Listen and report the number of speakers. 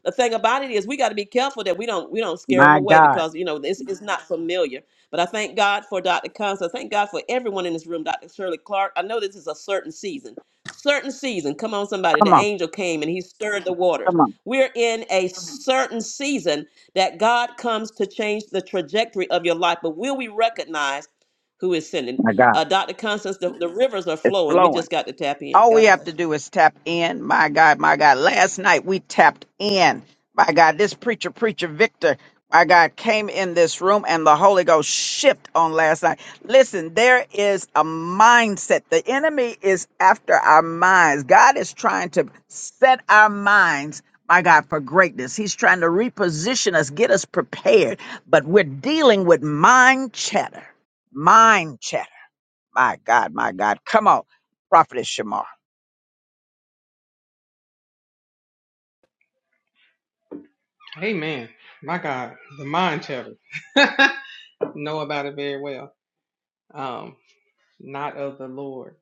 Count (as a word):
three